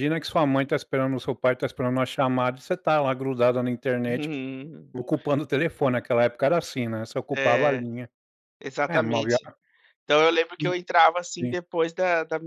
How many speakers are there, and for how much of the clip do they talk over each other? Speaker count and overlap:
two, about 12%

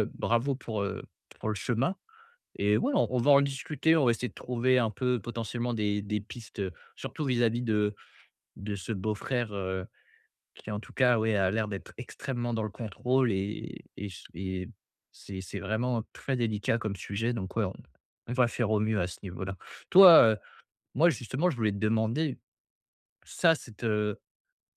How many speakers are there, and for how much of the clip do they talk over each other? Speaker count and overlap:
one, no overlap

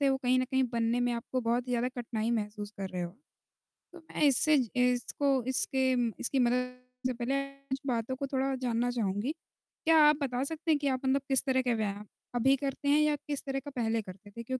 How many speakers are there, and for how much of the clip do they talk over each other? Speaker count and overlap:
one, no overlap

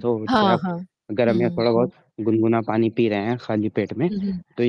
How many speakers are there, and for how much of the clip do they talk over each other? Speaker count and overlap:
two, about 27%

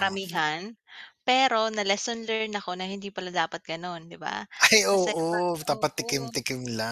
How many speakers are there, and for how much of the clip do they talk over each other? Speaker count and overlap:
two, about 23%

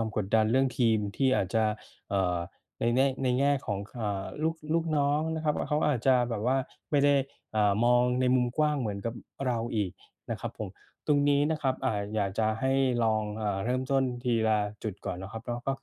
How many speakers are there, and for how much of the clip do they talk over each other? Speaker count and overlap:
one, no overlap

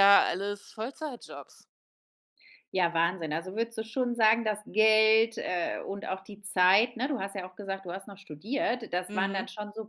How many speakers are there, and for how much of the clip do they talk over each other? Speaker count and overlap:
two, about 4%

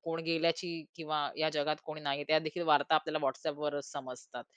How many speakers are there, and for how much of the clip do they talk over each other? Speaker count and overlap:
one, no overlap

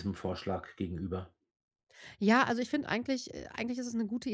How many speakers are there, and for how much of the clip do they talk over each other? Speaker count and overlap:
two, no overlap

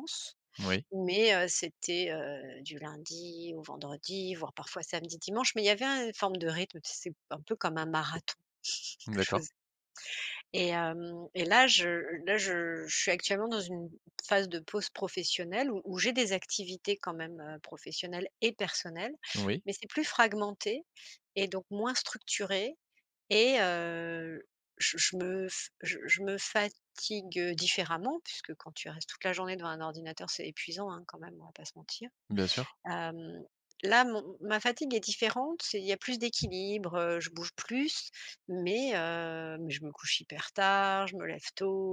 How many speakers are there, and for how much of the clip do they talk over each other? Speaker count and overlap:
two, about 1%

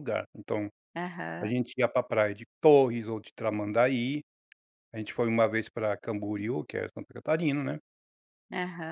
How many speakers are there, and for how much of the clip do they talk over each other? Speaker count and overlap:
two, about 1%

